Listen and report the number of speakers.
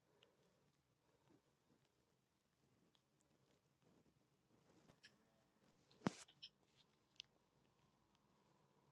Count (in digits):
0